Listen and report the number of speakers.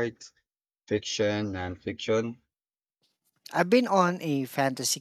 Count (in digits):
2